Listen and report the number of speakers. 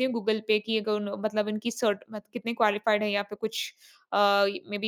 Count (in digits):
1